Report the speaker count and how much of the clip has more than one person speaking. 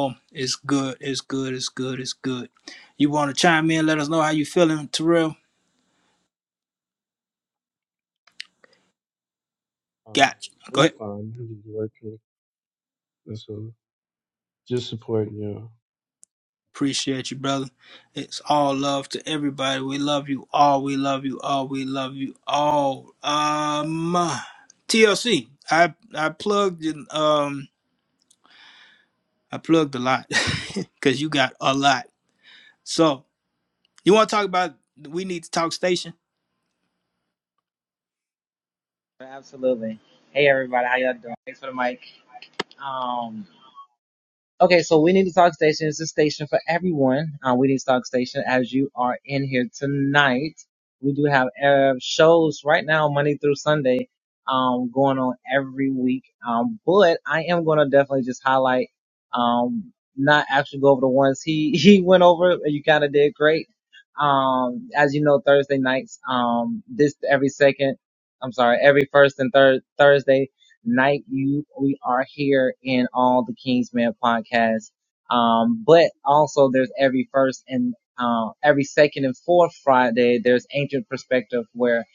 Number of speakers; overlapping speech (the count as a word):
three, under 1%